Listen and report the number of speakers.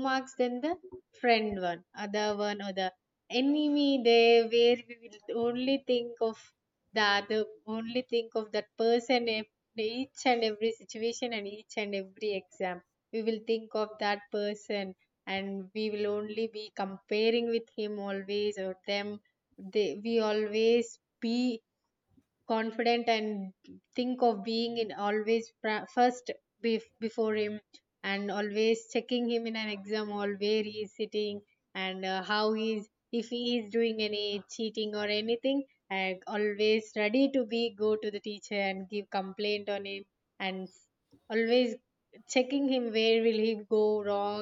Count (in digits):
1